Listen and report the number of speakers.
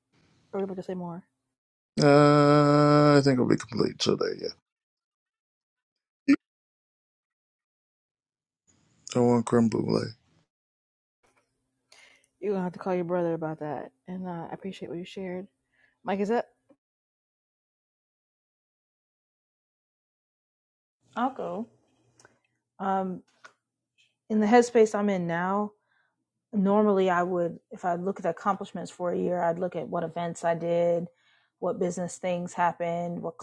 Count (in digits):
3